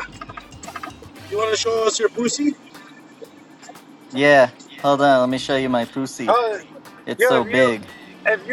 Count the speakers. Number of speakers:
3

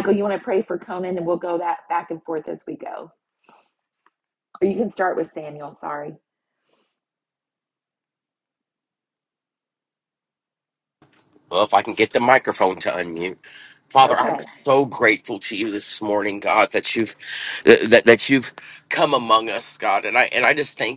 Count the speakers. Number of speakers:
2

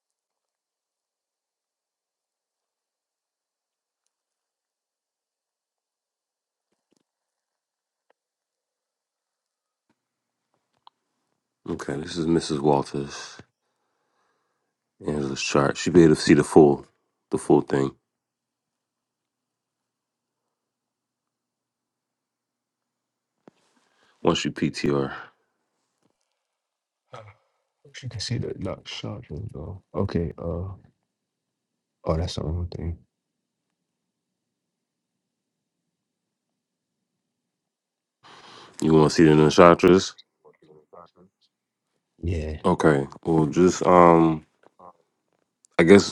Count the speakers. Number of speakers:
2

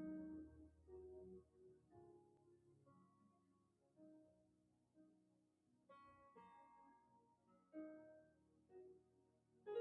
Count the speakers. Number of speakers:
0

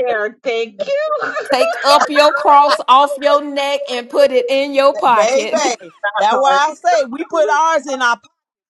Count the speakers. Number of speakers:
3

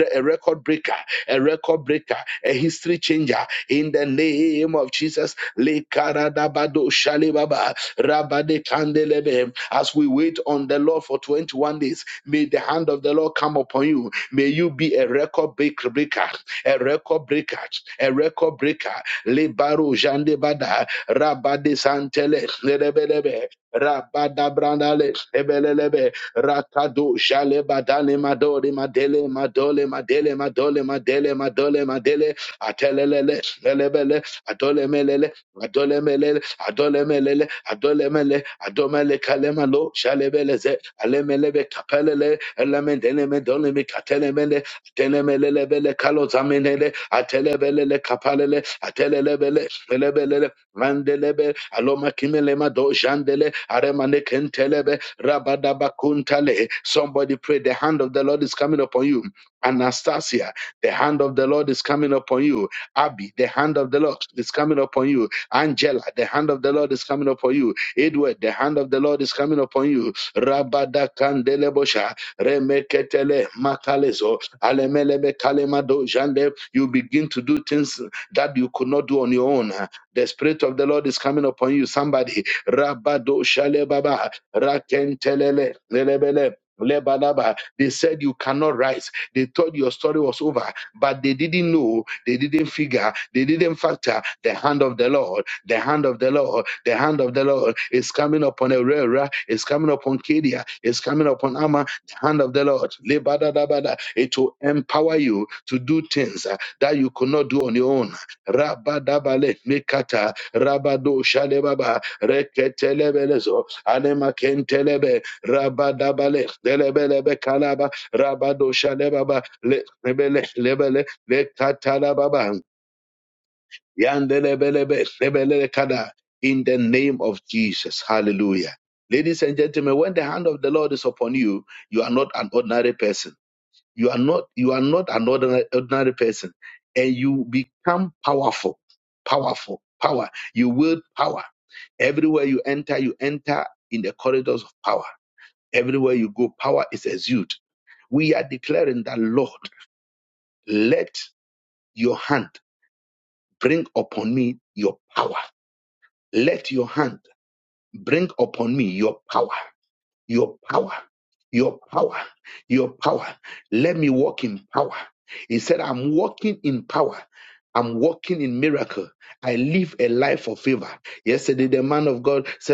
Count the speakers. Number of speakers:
1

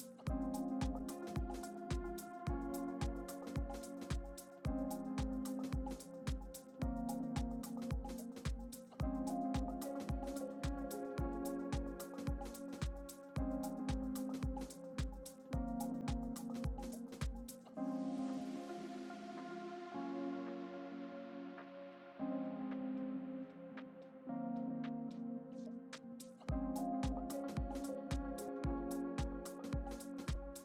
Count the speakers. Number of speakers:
0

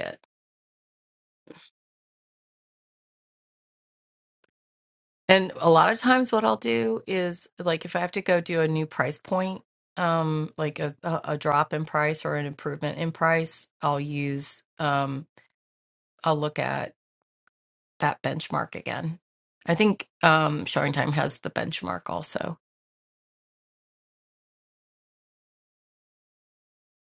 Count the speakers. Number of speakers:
1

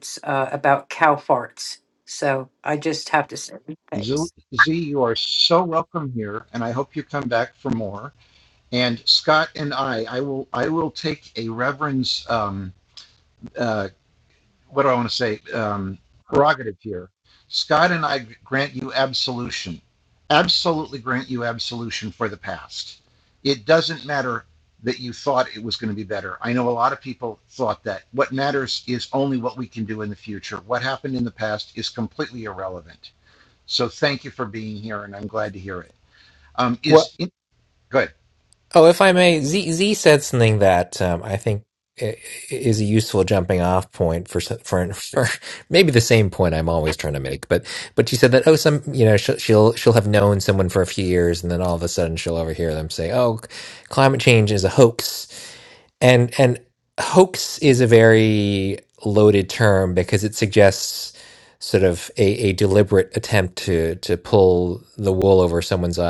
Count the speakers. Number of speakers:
3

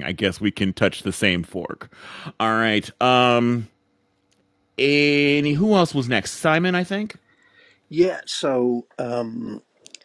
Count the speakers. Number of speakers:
2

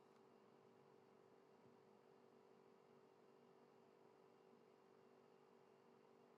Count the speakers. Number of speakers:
0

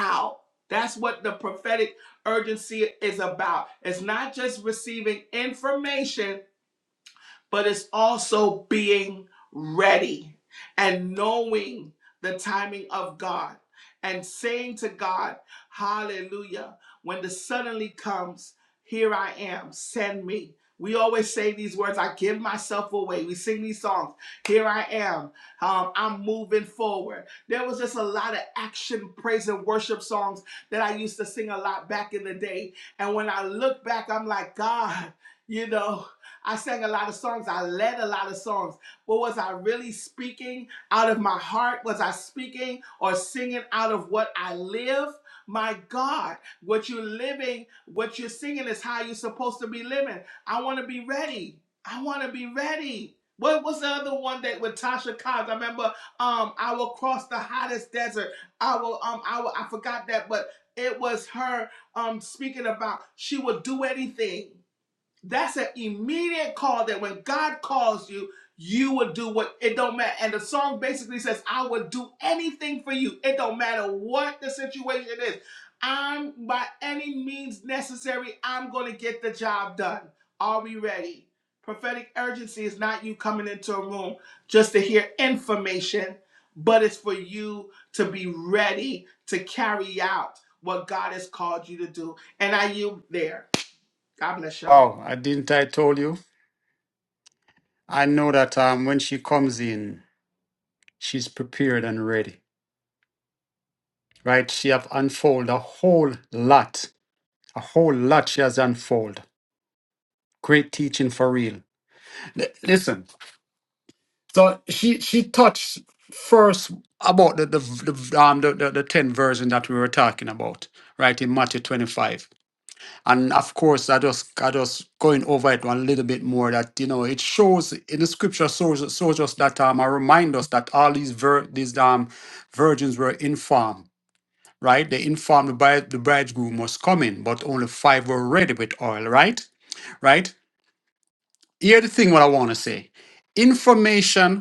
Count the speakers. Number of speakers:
2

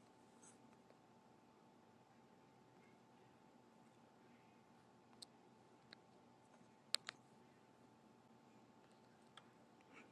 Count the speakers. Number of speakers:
0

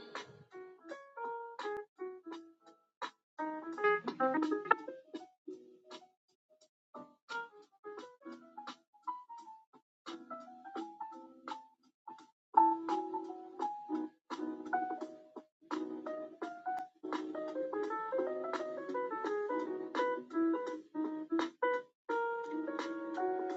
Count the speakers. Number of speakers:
0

